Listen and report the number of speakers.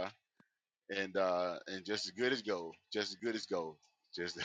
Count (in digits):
1